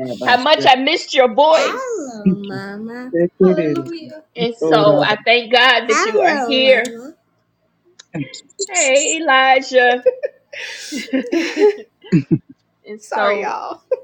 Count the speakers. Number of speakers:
three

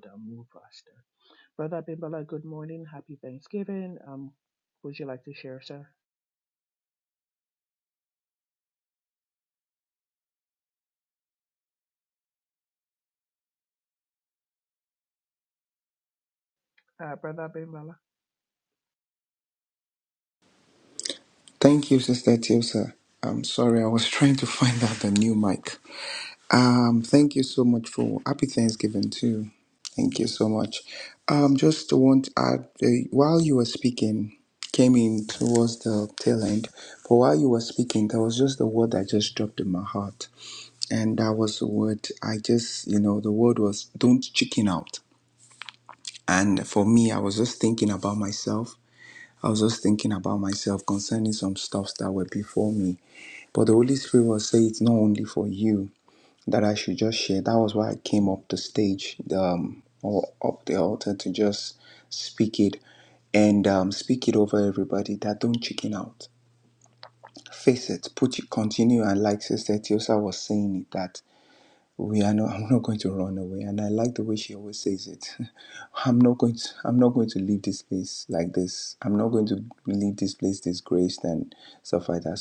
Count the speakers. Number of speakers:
two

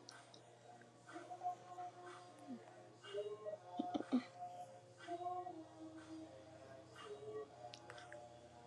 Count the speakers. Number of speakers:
zero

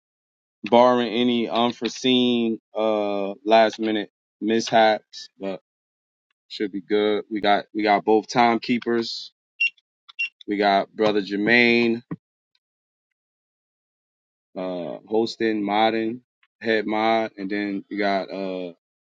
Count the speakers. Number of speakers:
one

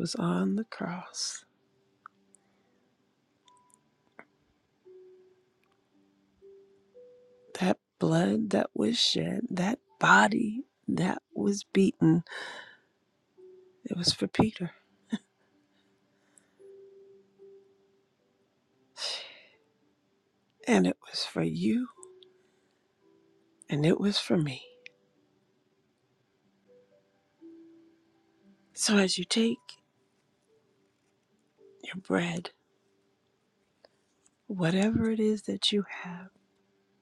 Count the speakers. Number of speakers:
one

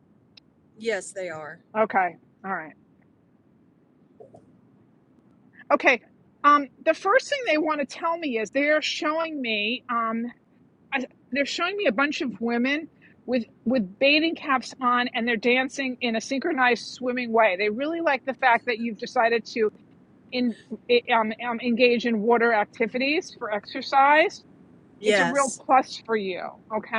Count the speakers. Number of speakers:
two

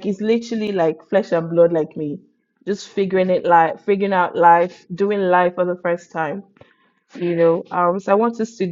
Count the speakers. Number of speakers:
one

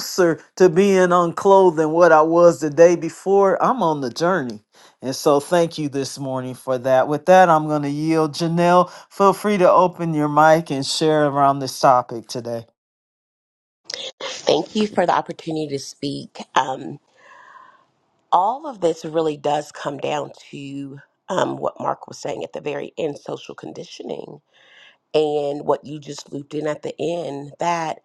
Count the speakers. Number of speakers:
two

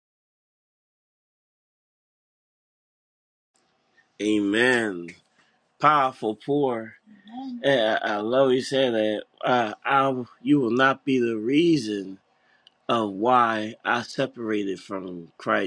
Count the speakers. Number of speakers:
one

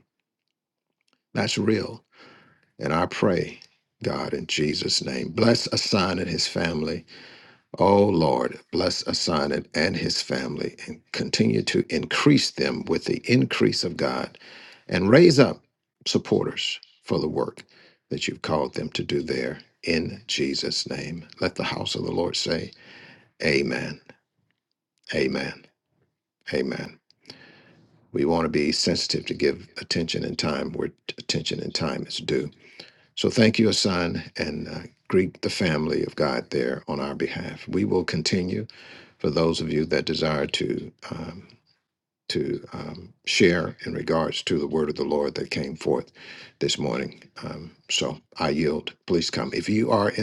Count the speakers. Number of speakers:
one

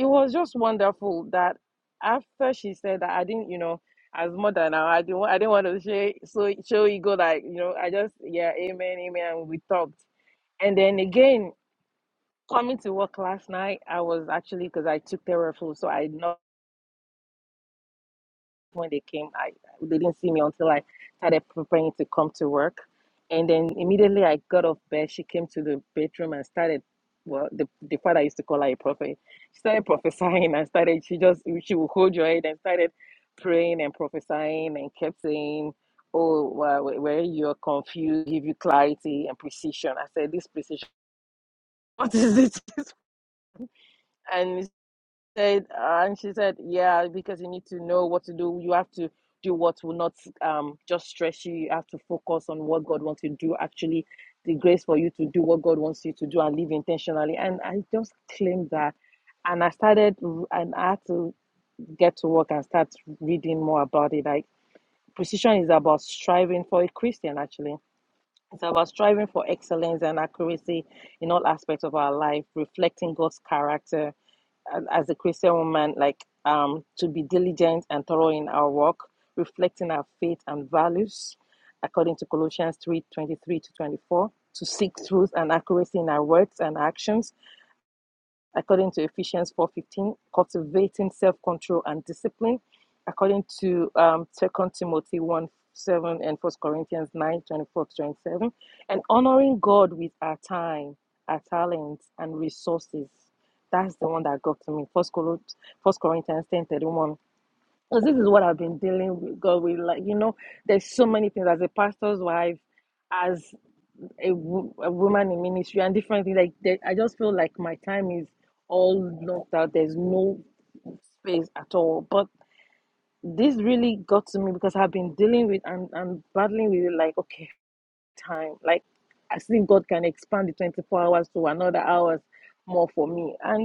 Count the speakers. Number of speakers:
one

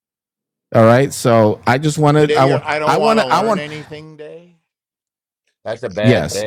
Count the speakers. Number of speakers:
two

